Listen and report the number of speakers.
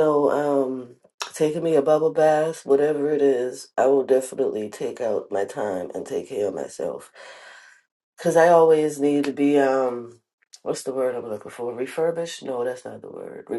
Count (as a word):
one